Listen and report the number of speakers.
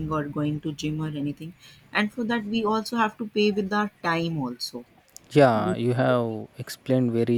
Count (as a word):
two